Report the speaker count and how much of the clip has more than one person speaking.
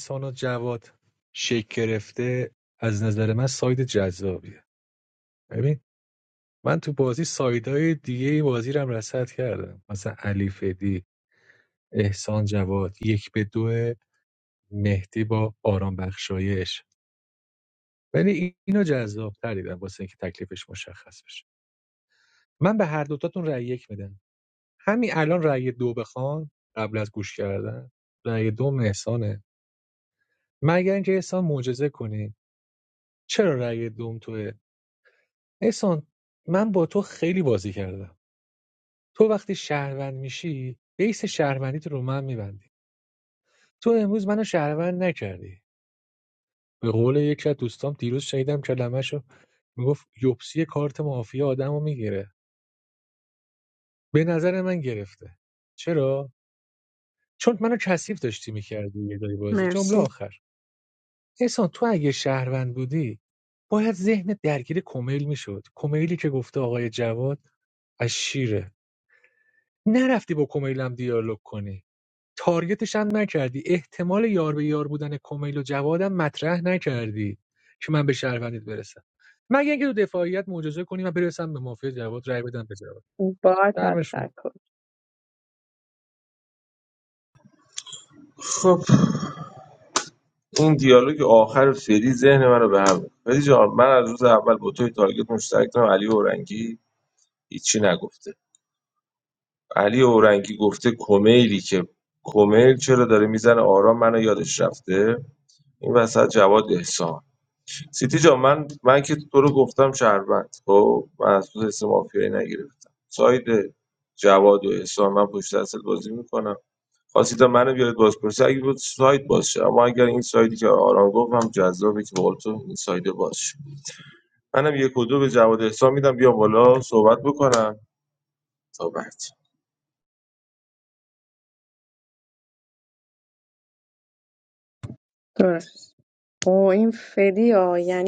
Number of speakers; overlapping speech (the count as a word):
three, about 1%